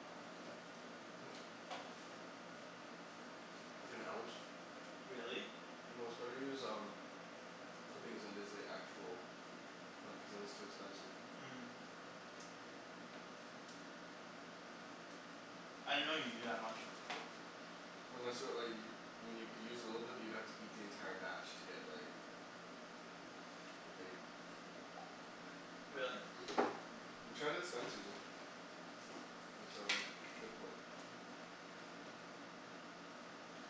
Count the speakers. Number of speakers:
2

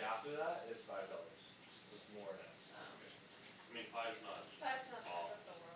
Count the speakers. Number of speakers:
3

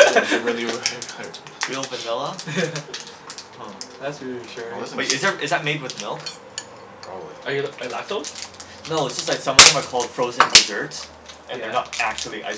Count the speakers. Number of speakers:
3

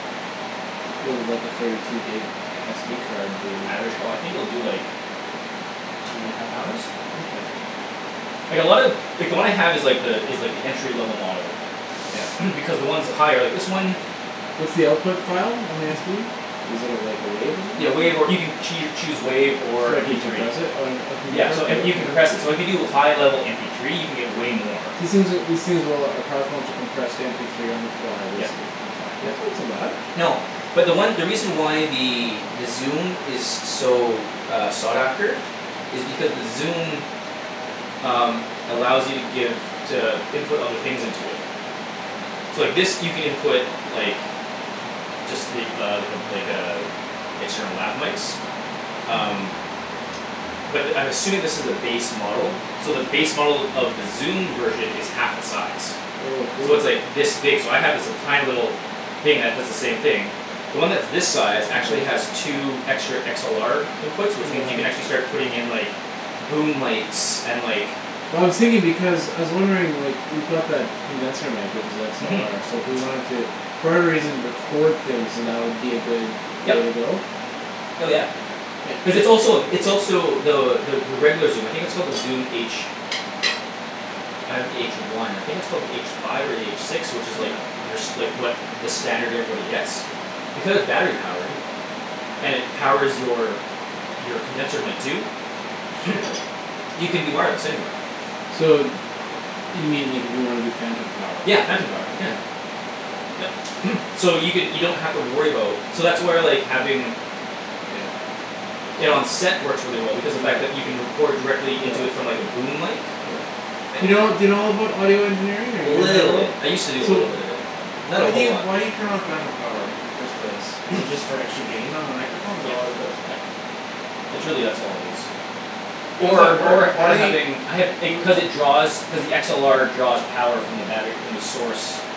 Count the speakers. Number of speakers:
2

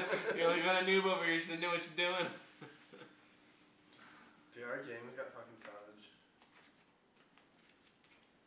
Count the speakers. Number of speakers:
2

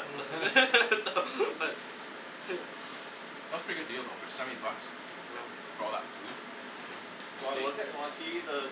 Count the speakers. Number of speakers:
3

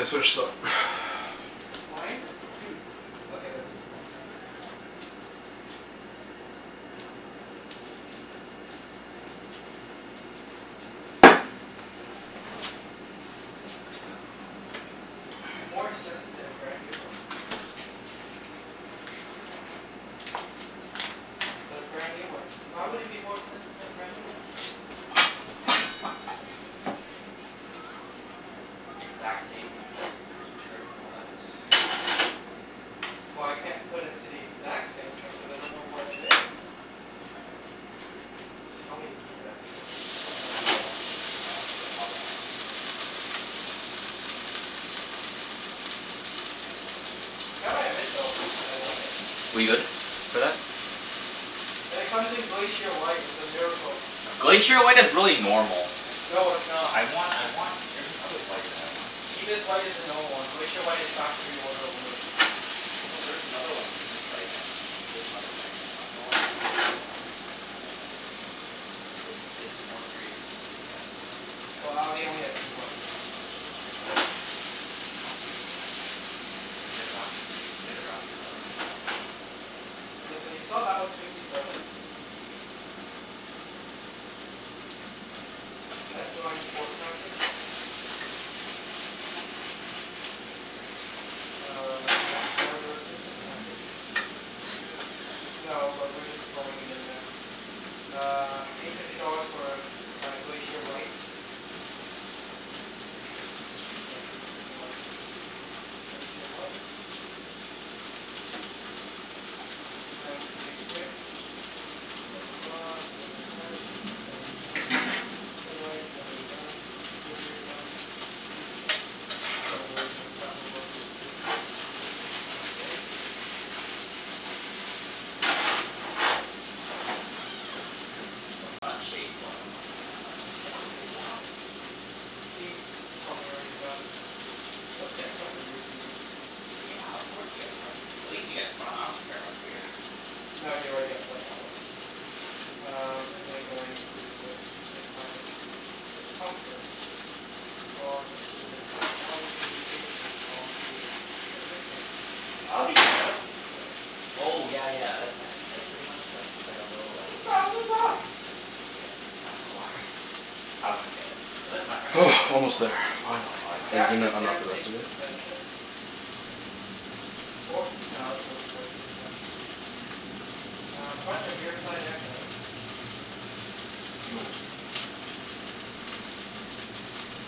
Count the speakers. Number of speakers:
3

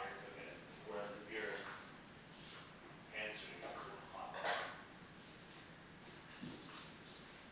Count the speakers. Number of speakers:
1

